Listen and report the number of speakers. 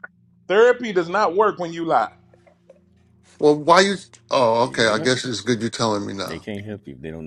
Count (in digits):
3